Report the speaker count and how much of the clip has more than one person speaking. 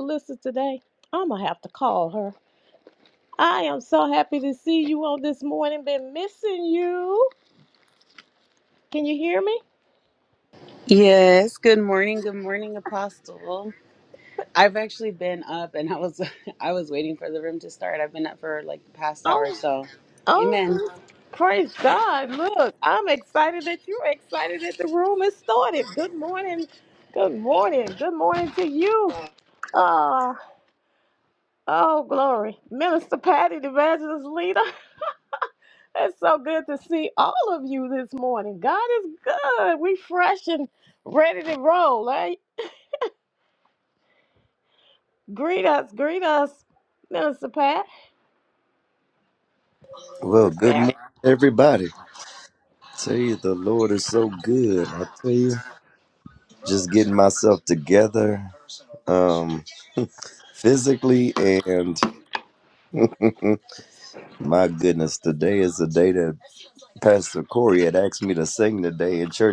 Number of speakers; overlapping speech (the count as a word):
three, about 2%